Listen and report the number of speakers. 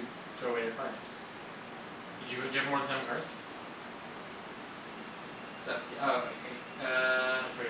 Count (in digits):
2